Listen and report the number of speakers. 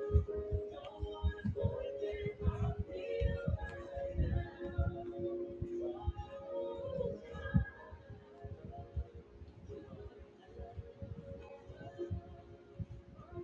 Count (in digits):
0